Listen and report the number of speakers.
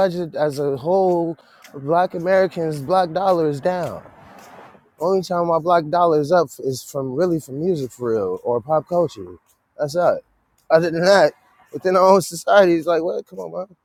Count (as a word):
one